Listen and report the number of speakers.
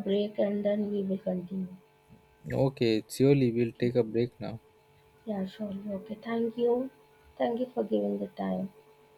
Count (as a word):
two